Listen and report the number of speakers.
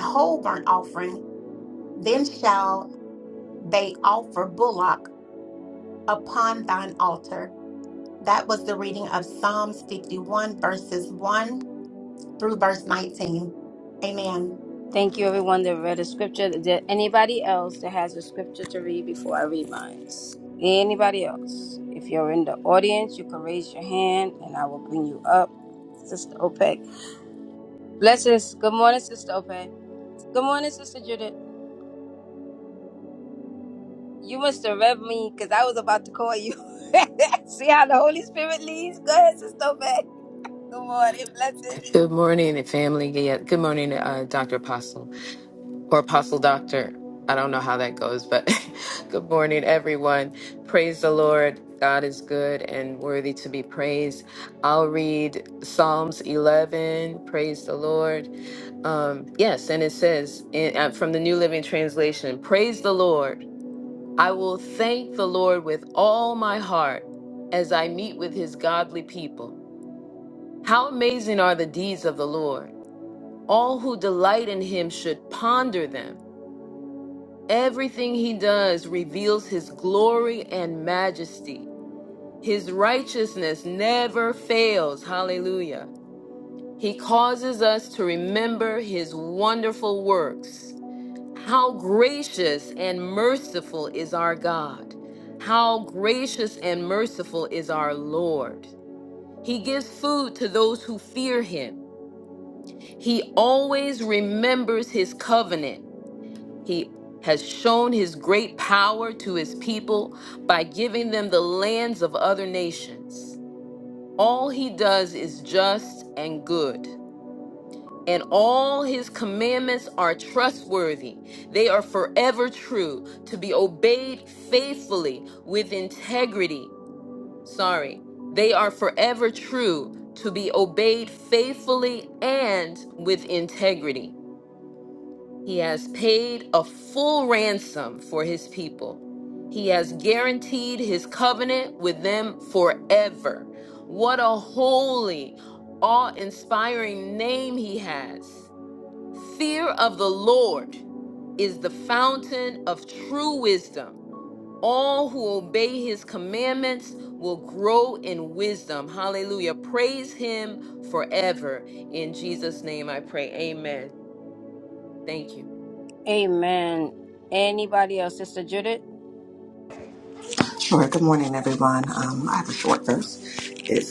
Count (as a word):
four